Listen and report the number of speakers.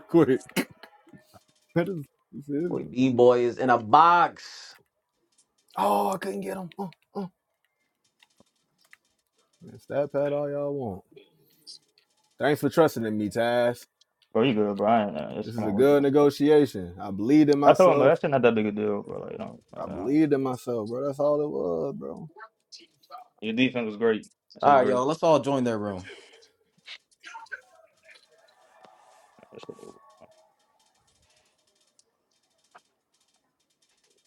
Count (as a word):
three